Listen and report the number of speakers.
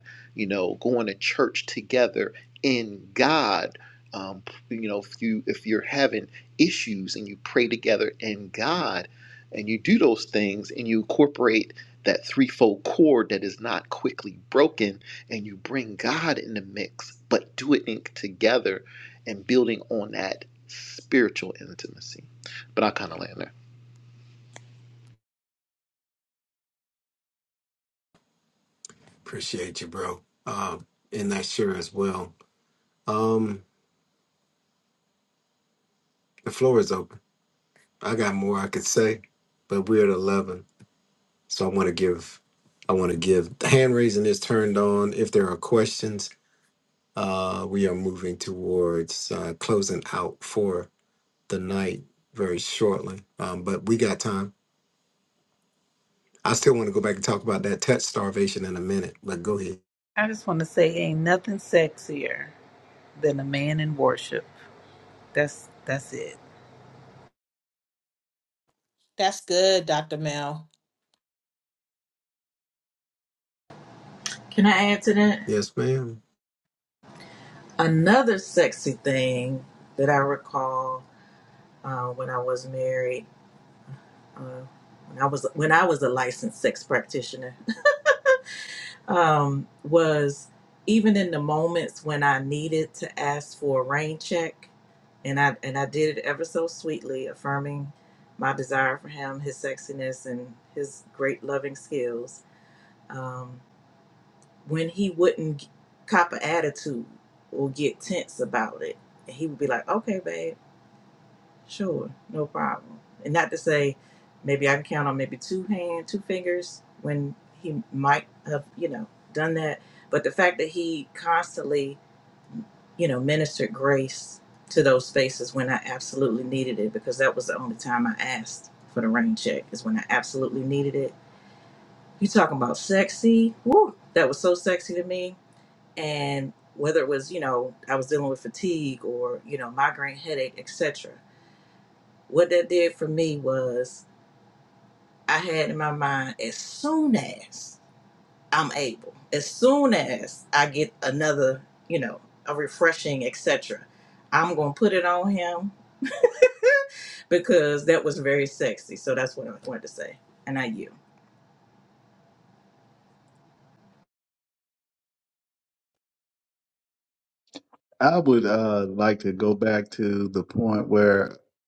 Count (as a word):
six